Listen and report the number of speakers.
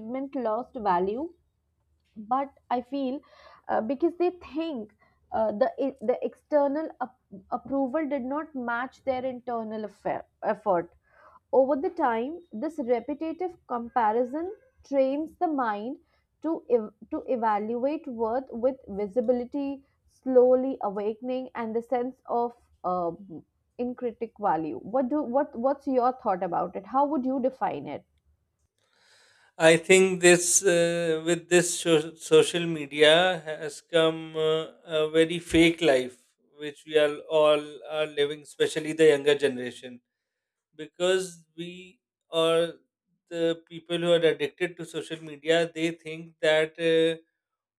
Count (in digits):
2